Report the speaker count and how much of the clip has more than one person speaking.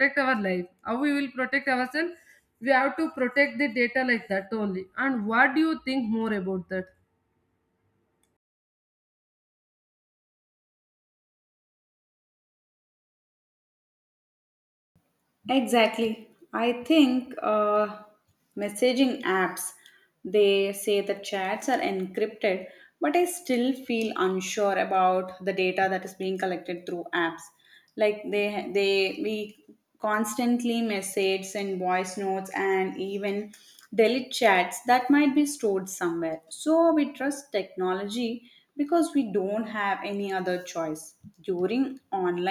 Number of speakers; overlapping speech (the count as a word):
two, no overlap